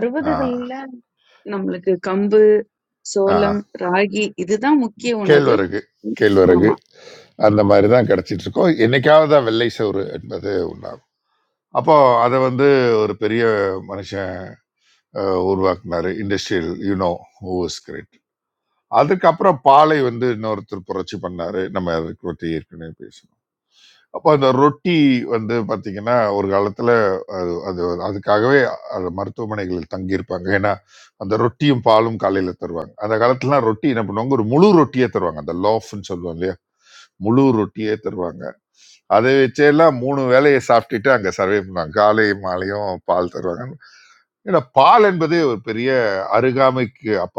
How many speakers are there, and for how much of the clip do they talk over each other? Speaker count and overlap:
two, about 2%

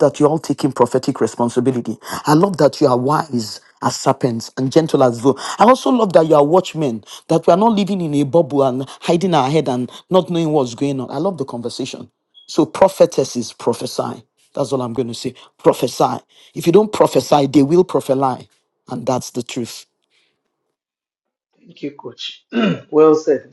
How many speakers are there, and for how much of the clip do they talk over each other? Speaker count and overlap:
two, no overlap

